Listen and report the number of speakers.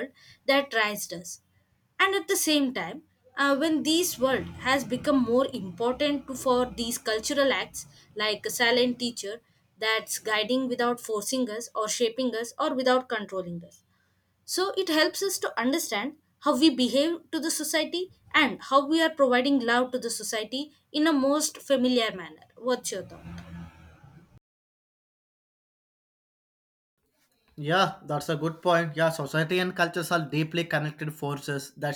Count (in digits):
2